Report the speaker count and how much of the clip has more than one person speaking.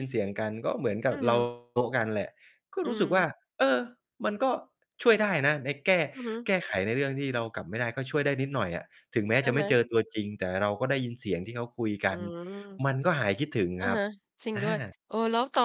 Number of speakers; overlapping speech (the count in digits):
2, about 10%